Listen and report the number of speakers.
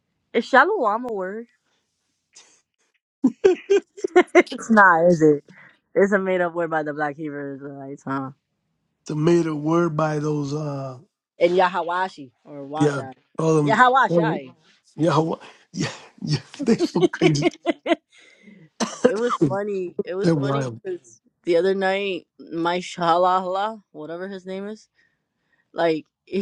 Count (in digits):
2